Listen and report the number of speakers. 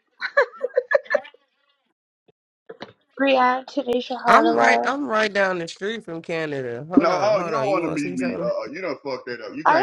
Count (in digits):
3